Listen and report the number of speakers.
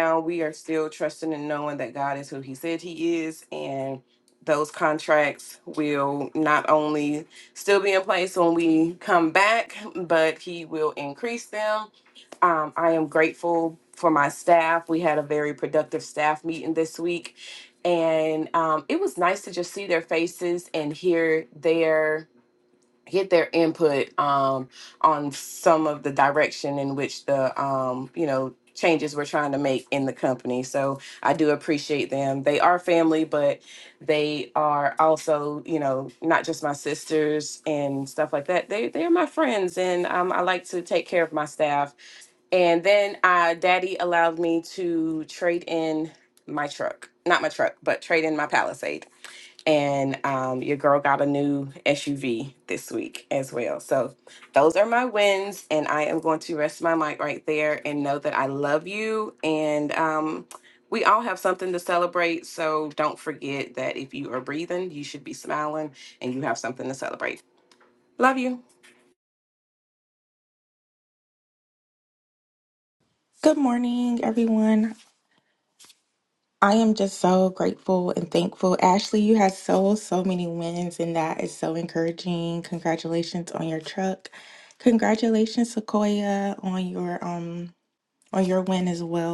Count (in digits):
2